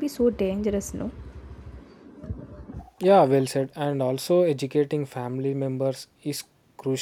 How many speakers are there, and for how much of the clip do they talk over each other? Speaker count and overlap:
2, no overlap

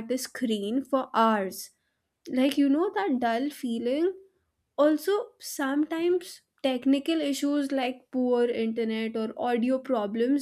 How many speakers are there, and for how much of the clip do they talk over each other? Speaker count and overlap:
1, no overlap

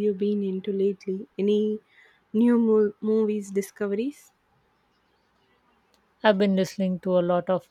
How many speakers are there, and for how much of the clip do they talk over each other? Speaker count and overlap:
2, no overlap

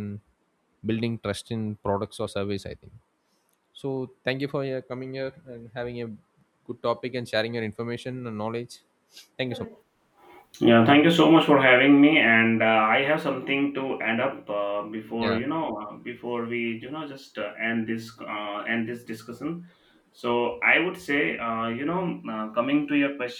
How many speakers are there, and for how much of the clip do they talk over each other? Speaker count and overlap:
2, about 1%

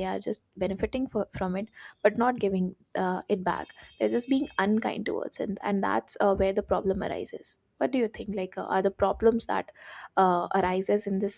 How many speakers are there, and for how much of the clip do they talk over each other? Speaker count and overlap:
1, no overlap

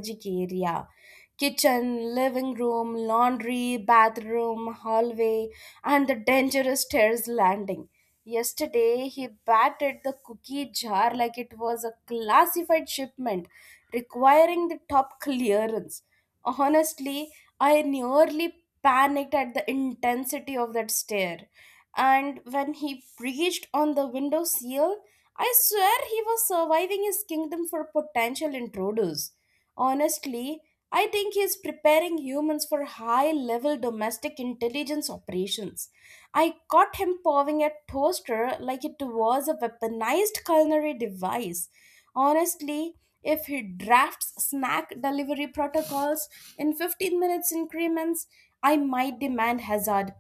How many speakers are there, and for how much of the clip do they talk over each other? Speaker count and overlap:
1, no overlap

